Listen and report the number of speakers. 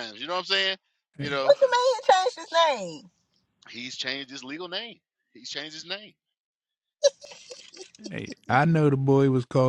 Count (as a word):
three